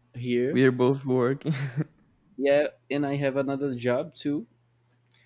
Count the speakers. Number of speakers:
two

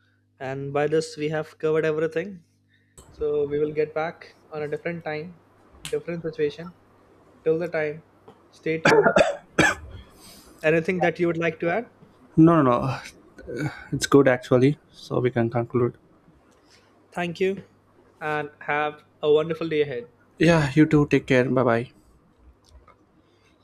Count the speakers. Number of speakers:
two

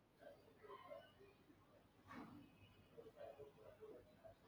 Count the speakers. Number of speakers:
zero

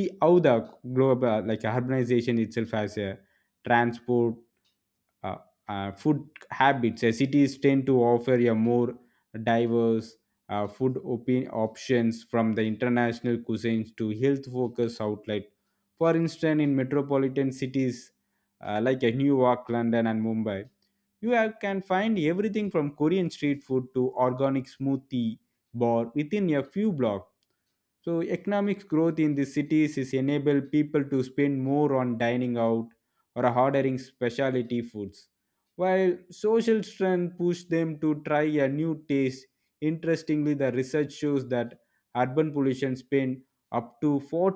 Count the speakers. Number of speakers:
one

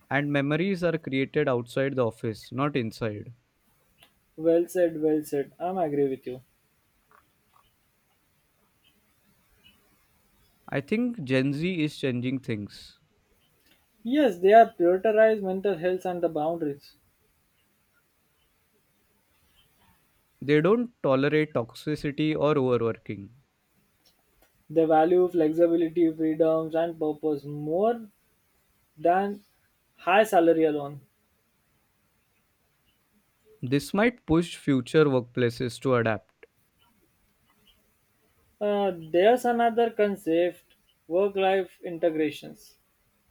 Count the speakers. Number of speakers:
two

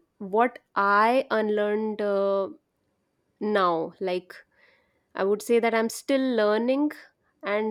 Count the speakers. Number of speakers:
one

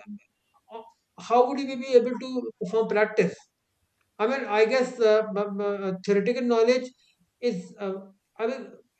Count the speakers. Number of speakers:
one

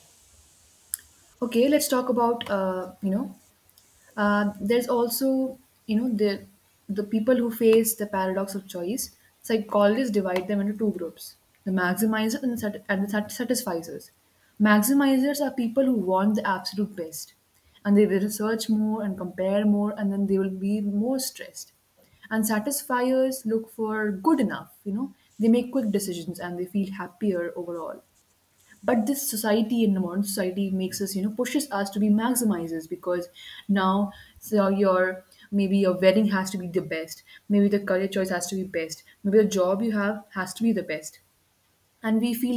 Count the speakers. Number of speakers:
one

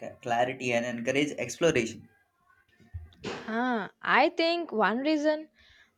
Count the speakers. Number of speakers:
two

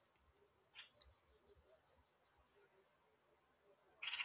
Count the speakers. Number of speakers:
zero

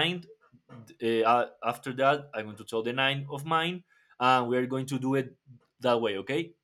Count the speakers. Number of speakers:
one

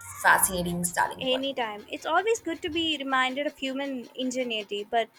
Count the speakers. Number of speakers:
two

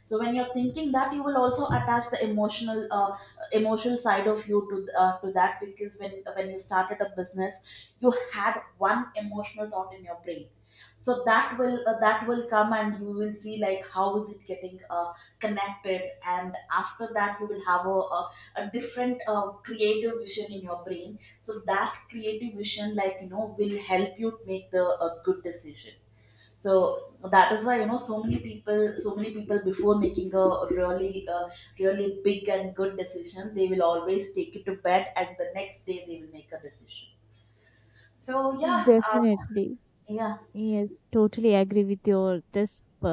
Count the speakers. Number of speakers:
two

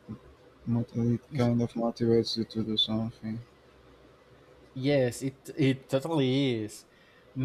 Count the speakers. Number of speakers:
two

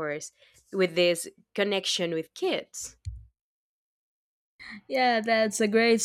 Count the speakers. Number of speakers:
two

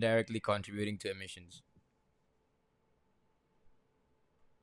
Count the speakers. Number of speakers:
one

